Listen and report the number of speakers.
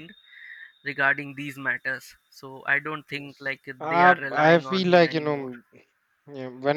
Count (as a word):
two